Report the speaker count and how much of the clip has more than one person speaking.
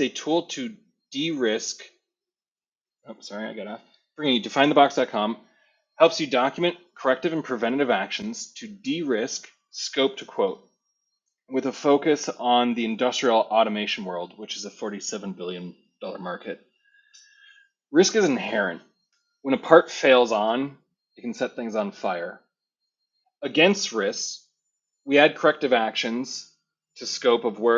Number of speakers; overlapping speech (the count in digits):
1, no overlap